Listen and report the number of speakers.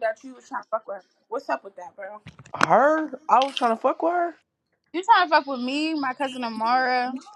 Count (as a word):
three